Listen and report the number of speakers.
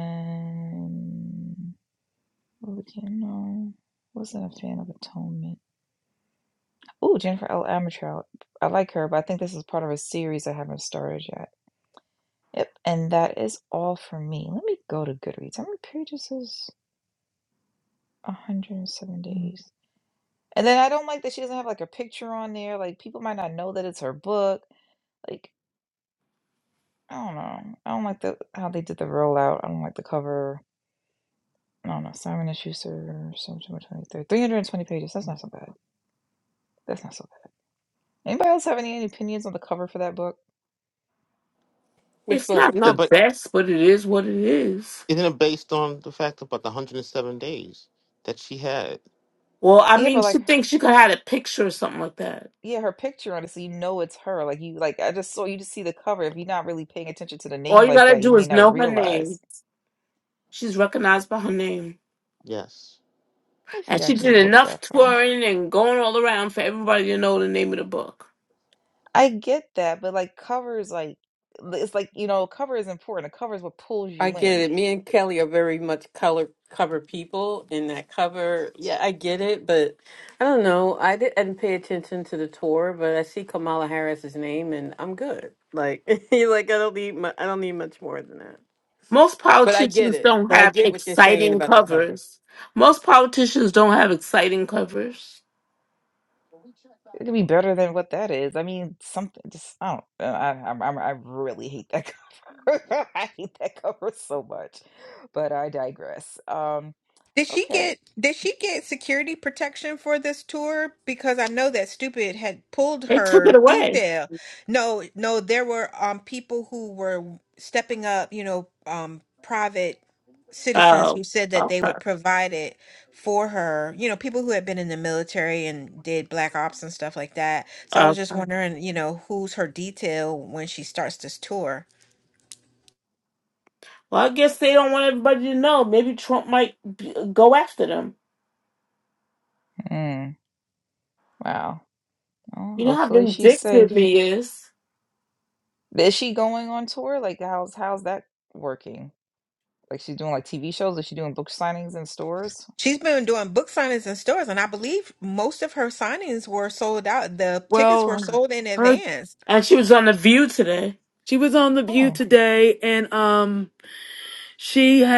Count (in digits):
6